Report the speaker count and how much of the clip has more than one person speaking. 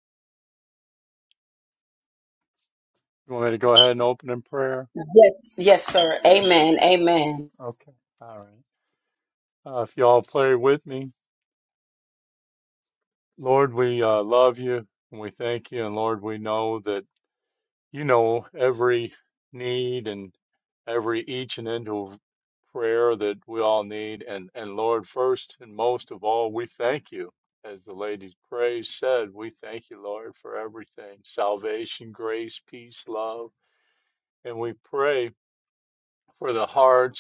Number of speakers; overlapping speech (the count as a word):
two, no overlap